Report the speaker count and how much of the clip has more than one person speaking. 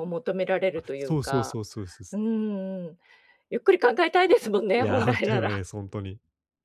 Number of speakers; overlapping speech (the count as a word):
two, about 24%